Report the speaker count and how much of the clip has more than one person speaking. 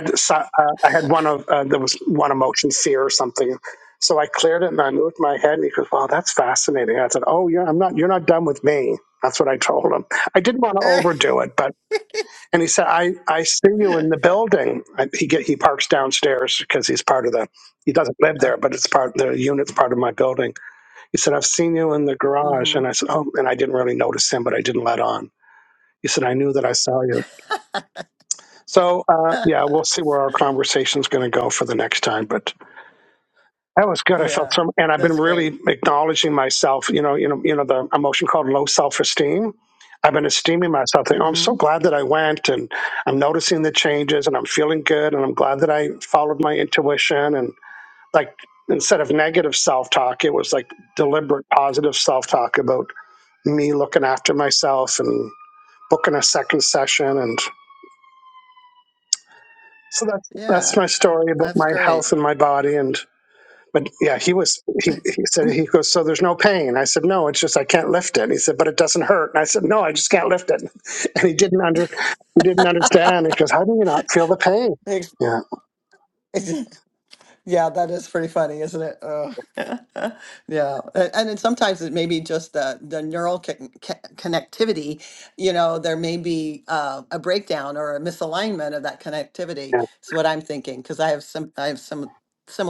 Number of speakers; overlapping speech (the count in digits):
2, about 3%